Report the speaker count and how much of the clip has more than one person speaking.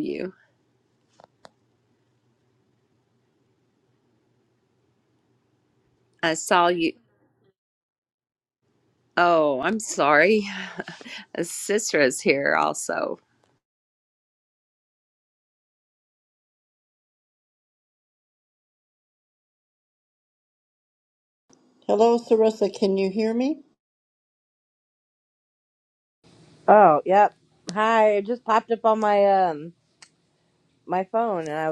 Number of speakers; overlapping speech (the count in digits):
3, no overlap